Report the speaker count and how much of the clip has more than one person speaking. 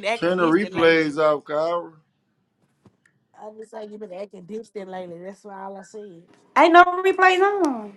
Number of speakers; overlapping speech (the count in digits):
3, about 12%